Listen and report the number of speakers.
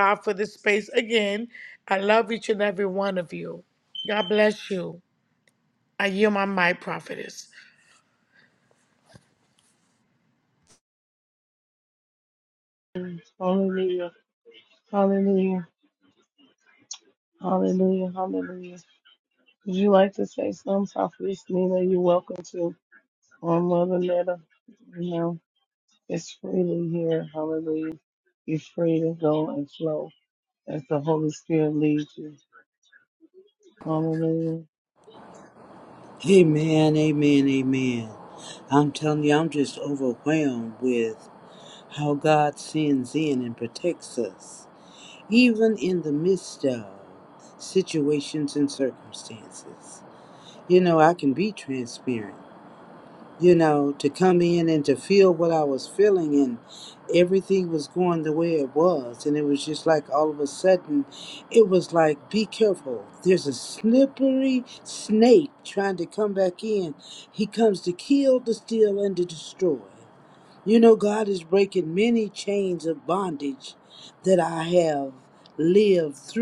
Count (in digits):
3